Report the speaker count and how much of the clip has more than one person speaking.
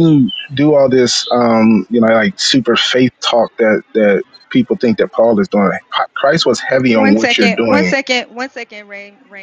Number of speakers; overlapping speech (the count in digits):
2, about 10%